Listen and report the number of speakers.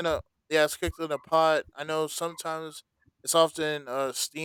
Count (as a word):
one